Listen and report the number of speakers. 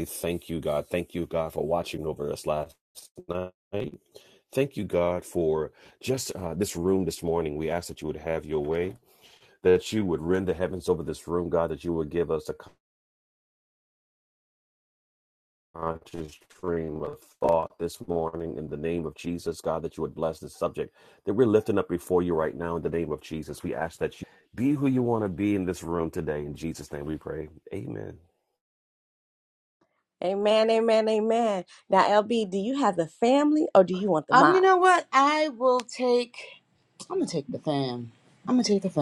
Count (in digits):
3